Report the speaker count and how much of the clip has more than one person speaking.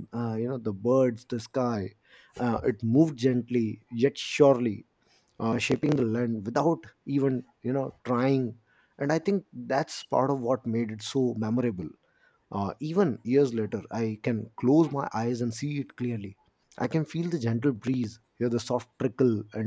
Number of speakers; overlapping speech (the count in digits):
1, no overlap